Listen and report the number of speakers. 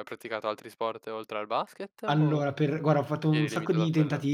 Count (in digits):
2